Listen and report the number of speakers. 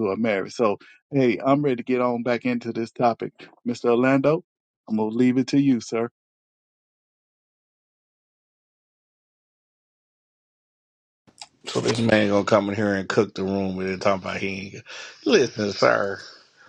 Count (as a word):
two